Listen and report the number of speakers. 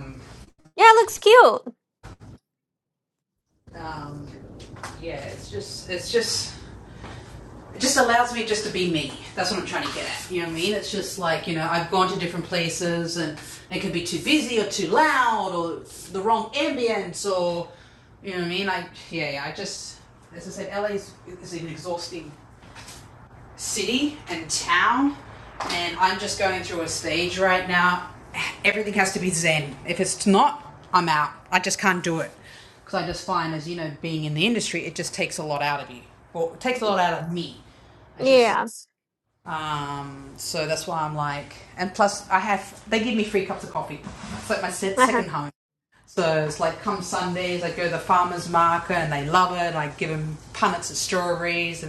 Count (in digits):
2